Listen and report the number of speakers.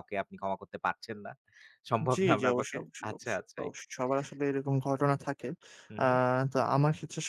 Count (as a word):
two